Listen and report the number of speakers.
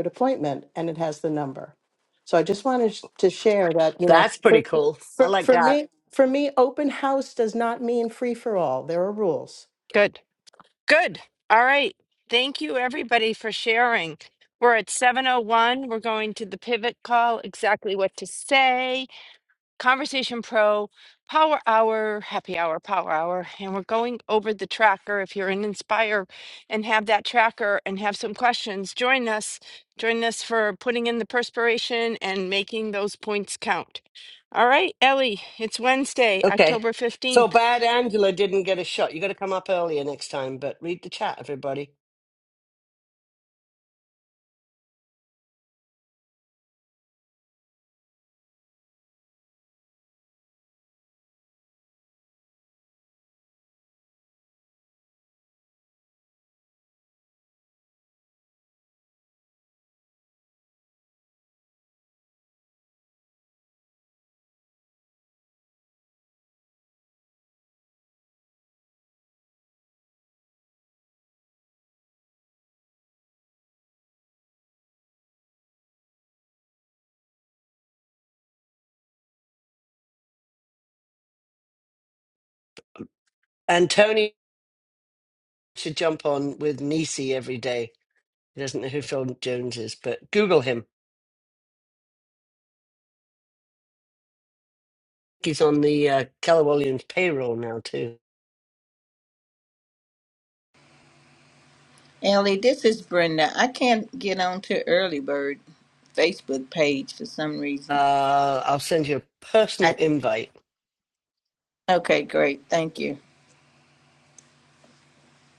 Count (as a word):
four